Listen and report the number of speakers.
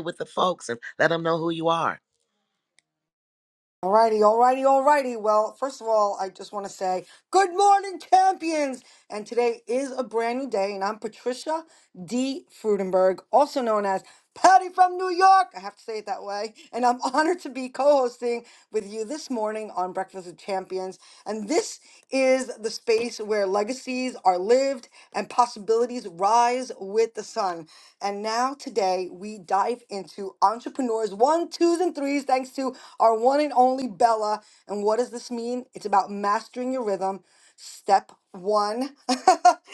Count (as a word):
two